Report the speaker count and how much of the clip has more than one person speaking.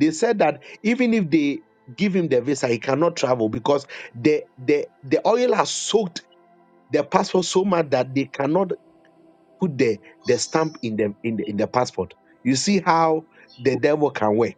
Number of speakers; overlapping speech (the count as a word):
one, no overlap